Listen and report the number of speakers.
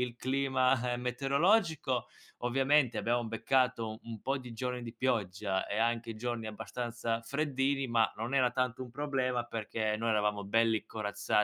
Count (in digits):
1